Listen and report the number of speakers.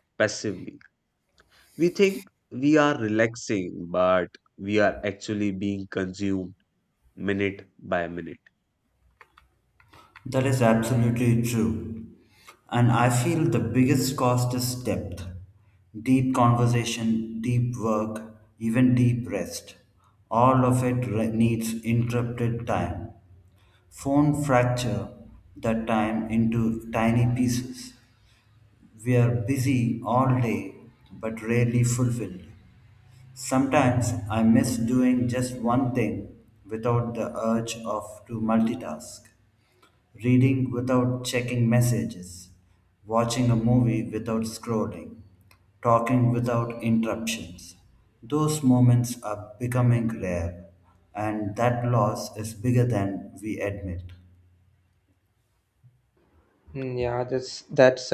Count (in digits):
3